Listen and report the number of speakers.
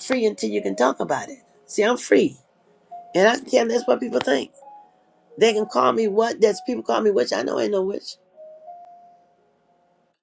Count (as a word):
one